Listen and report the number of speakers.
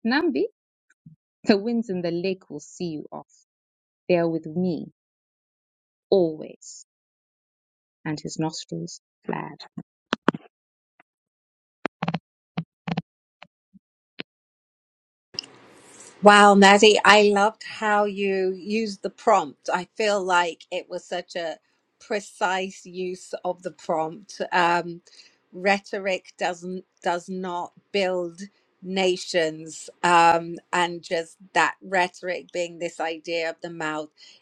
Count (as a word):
two